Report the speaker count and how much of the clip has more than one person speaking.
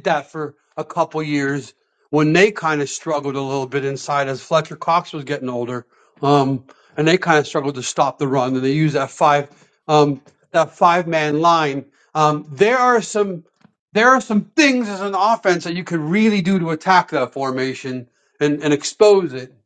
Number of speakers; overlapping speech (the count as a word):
one, no overlap